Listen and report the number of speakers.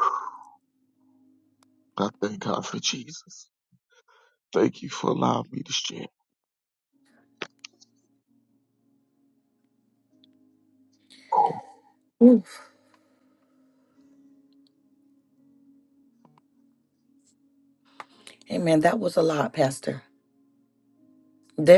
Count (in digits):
2